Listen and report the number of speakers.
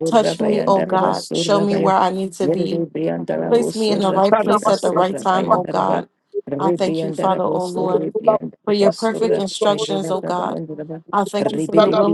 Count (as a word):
two